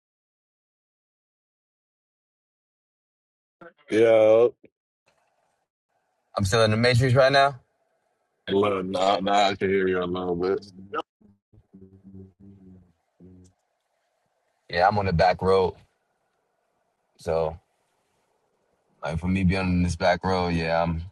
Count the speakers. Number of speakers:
two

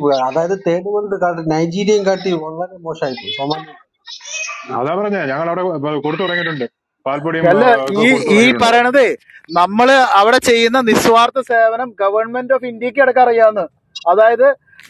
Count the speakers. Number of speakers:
three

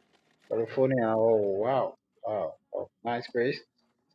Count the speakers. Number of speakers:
one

